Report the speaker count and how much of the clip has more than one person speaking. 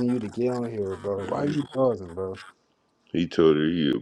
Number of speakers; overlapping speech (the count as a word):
two, about 6%